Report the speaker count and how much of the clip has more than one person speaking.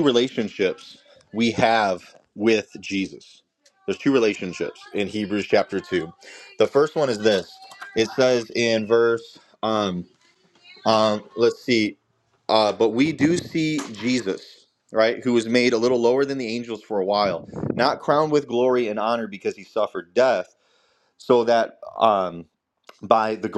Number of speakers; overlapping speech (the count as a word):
one, no overlap